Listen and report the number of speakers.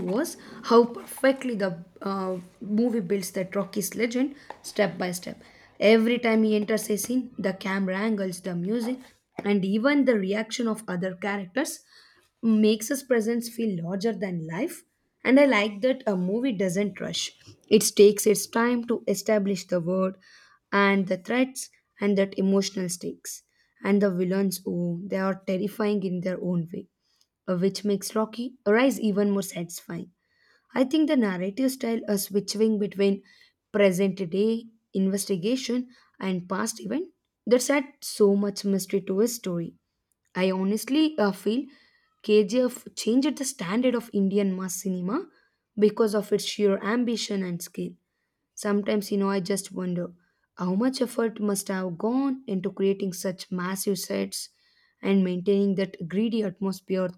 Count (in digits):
1